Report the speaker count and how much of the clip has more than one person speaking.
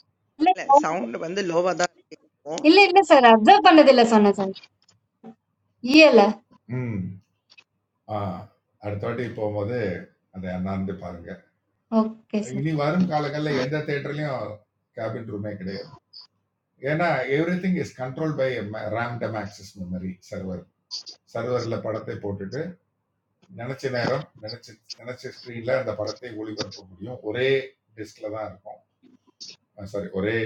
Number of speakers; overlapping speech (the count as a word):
three, about 1%